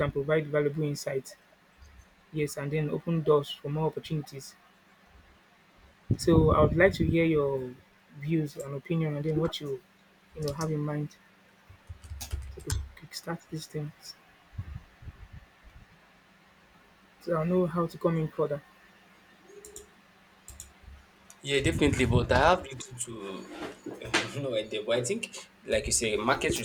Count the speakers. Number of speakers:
2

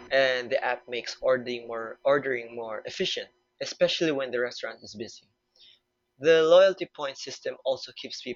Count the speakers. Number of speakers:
1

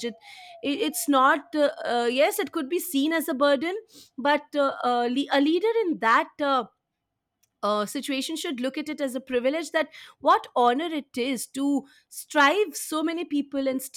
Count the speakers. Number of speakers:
1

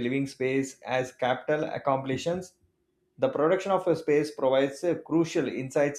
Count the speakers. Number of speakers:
1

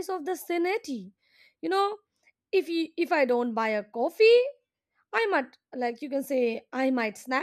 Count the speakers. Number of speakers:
1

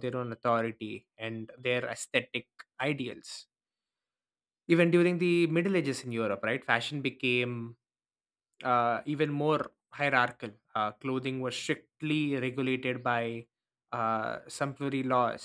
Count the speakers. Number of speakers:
1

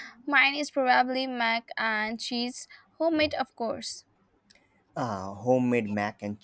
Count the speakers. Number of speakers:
2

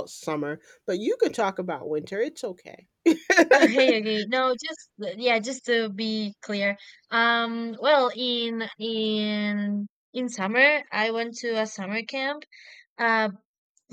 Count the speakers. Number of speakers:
2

